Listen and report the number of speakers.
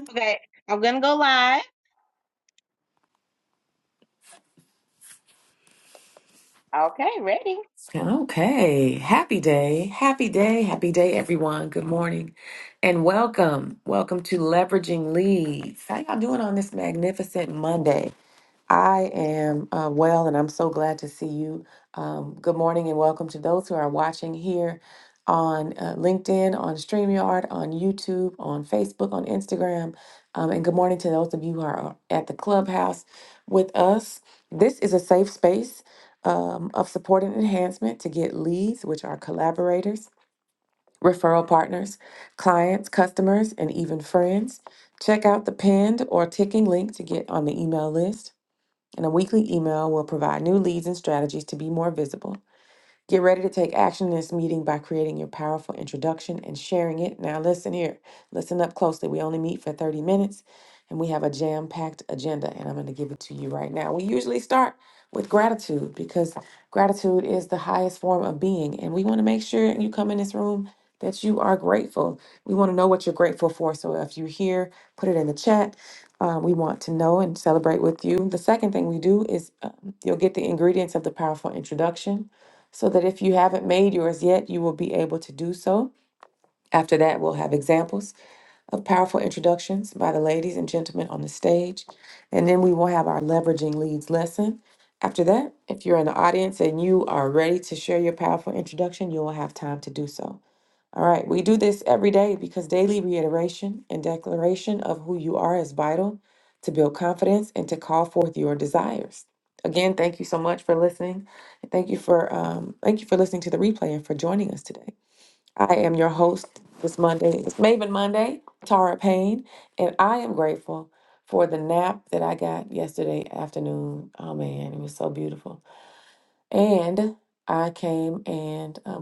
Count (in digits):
2